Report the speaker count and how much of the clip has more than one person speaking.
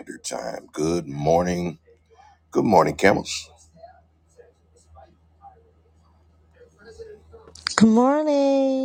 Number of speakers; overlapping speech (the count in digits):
2, no overlap